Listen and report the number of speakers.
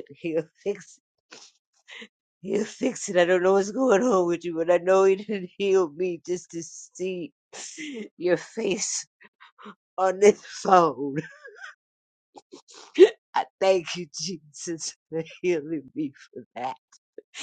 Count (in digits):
1